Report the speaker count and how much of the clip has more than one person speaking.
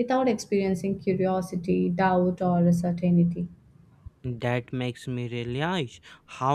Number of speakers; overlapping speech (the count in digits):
2, no overlap